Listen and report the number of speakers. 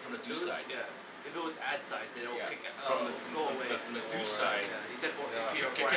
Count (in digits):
3